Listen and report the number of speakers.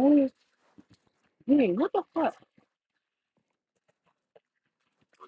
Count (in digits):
1